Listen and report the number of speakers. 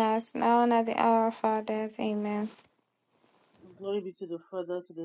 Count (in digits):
2